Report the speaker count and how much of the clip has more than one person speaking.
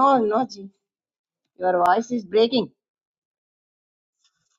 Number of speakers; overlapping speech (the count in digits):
1, no overlap